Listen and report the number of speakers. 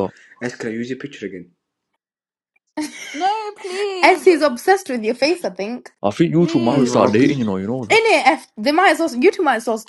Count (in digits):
4